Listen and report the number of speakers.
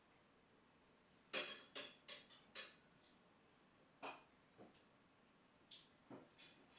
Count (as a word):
zero